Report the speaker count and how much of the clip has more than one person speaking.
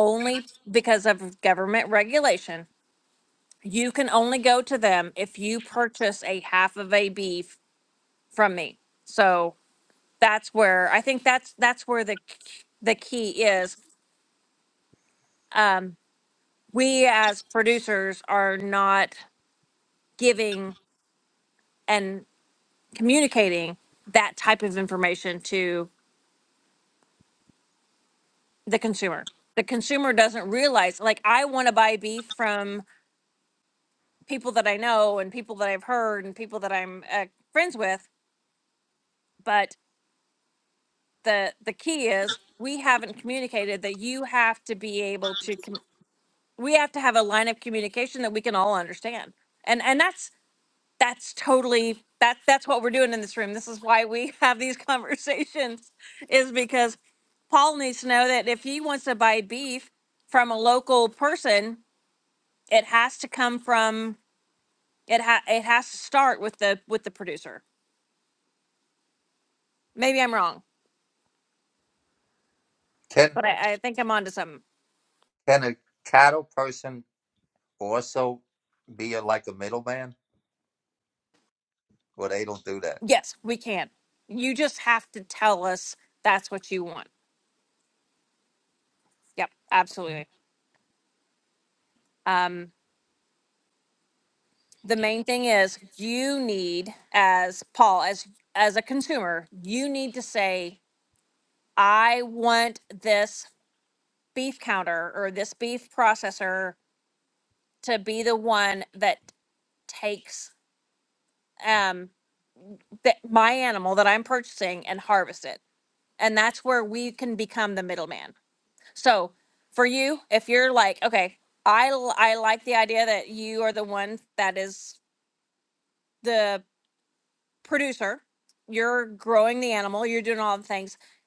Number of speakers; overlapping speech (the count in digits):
2, no overlap